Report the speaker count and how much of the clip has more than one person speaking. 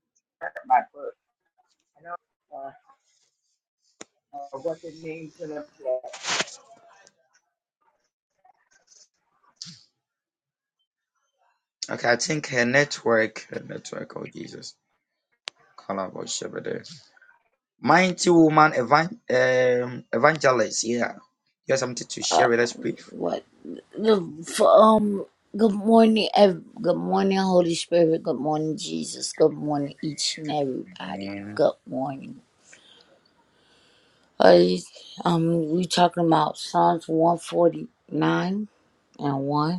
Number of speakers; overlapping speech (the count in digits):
3, about 2%